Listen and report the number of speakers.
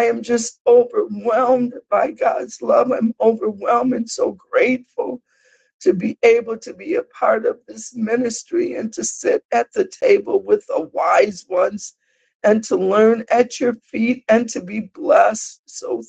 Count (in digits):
1